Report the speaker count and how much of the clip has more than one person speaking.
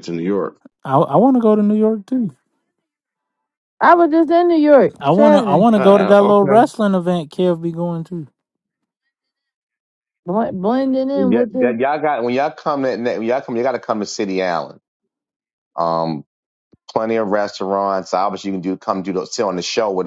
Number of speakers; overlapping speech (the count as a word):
four, about 11%